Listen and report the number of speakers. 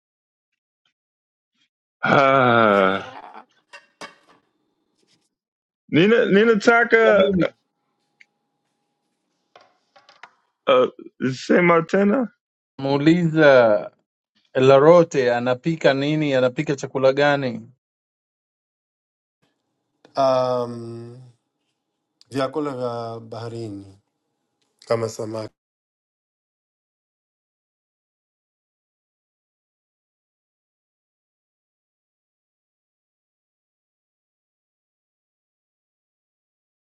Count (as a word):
three